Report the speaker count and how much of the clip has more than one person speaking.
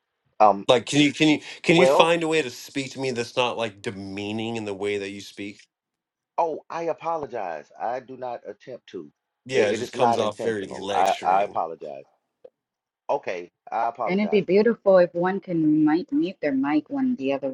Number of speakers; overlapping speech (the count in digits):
3, about 15%